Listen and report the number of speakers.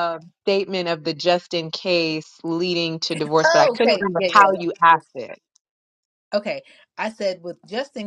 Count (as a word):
two